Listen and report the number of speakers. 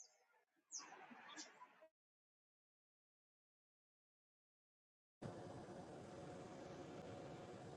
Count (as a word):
zero